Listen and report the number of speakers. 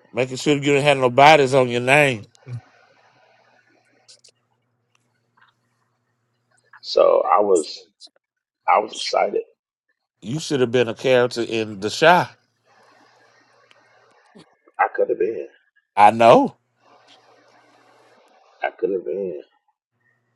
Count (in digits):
2